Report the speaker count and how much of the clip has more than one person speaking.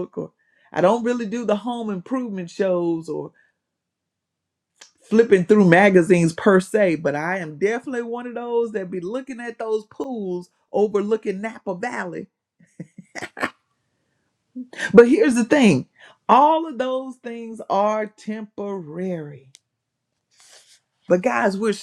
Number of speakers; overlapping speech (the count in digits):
1, no overlap